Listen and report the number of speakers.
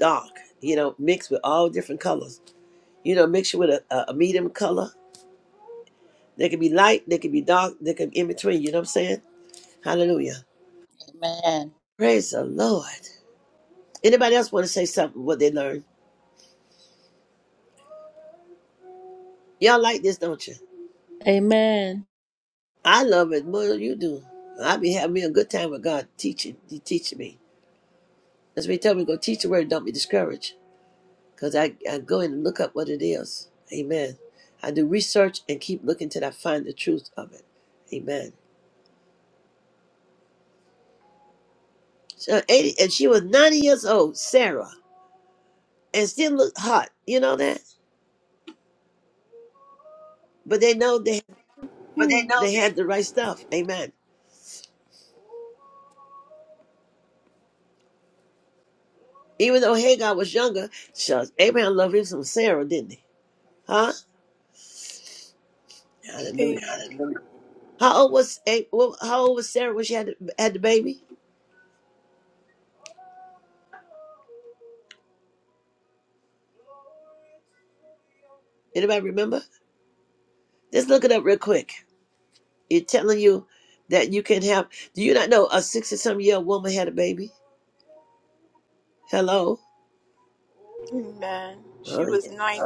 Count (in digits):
3